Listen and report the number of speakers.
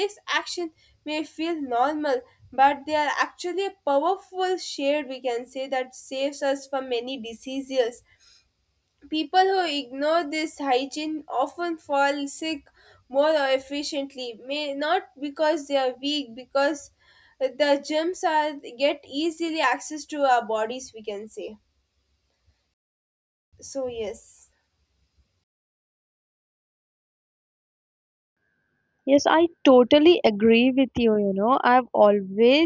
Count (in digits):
2